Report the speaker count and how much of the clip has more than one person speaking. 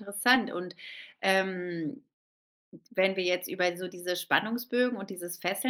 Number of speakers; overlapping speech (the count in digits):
1, no overlap